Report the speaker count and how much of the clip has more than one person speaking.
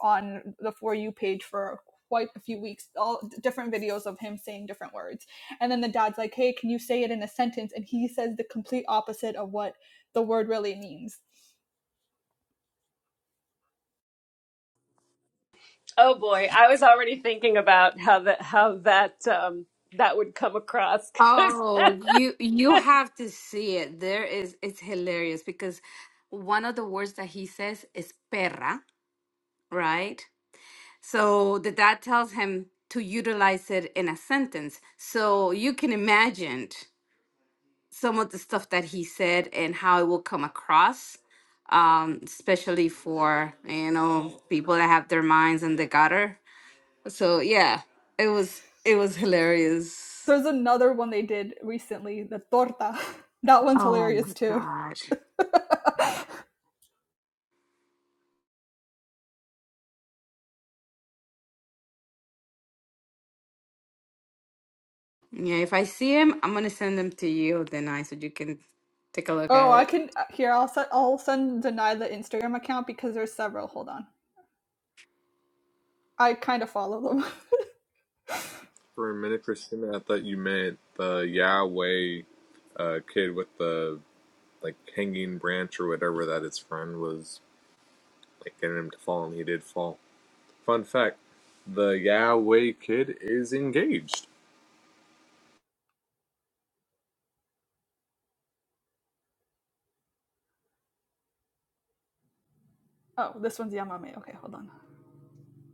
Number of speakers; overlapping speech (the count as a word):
four, about 2%